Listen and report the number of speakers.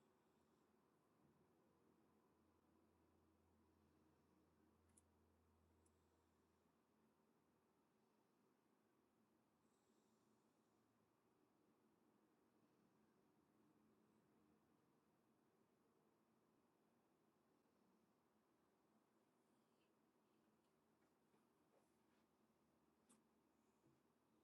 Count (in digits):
0